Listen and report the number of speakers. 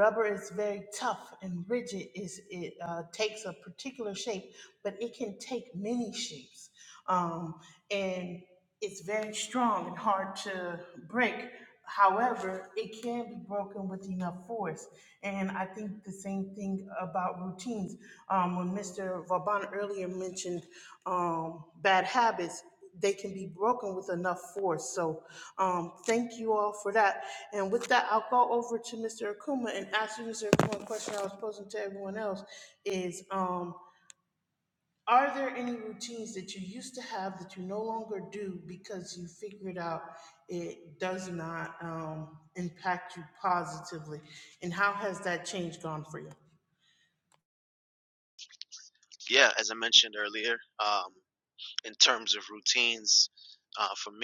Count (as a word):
two